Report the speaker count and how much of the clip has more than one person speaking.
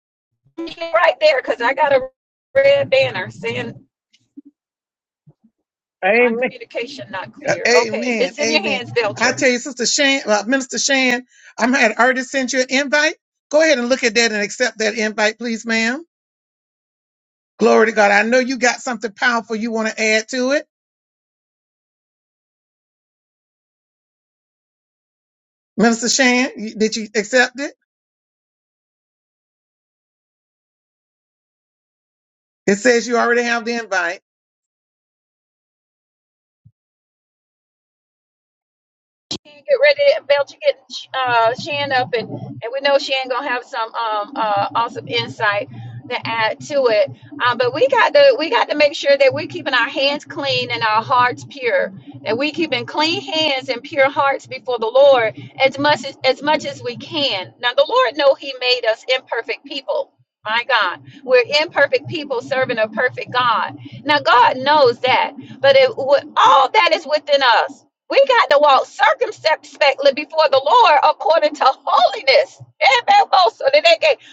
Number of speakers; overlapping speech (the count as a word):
two, about 3%